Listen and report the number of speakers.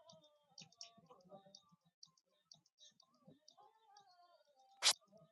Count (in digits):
0